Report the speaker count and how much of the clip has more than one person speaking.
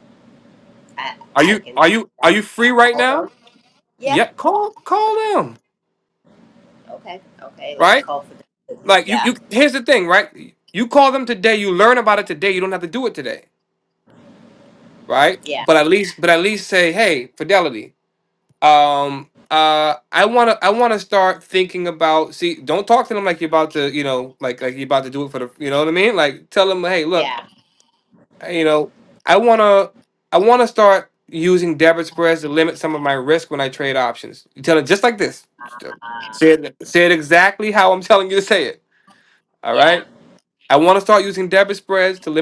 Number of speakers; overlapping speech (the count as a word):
two, about 8%